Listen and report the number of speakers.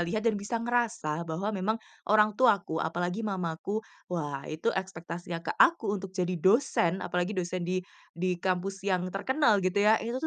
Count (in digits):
1